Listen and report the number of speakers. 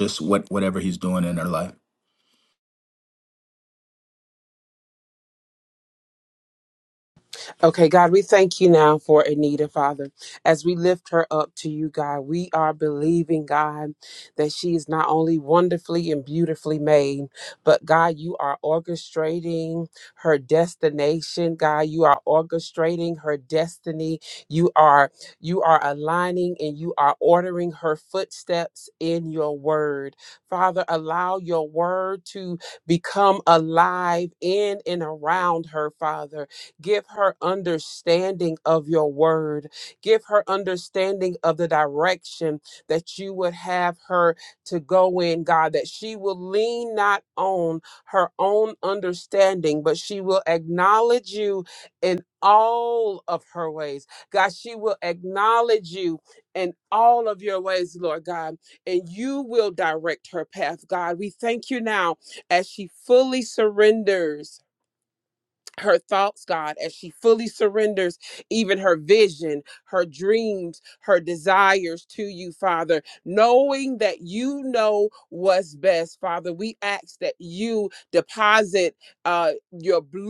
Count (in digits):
2